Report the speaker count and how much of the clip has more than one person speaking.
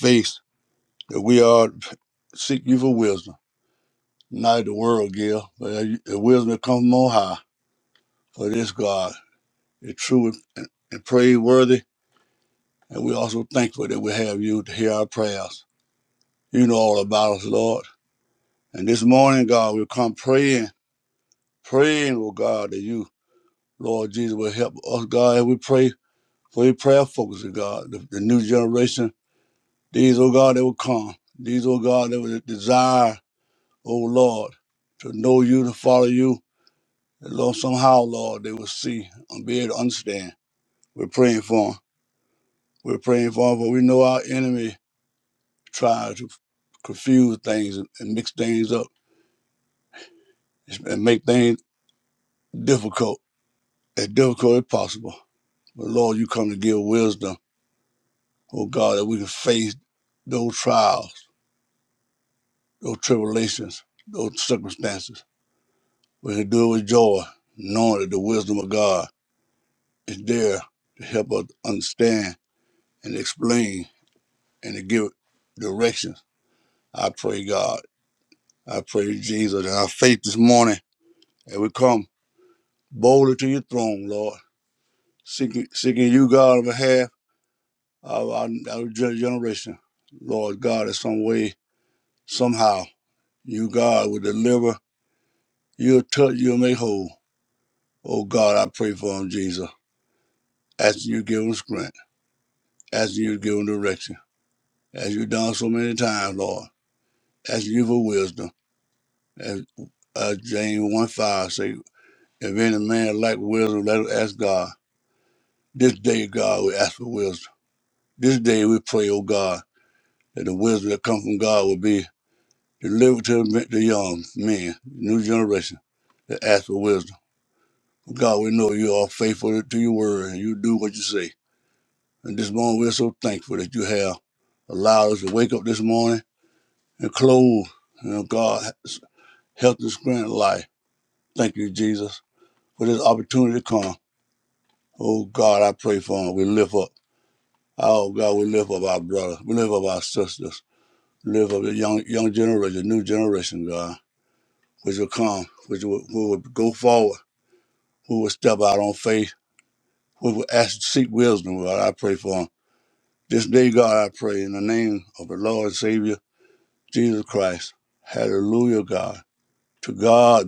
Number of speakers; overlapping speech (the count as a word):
one, no overlap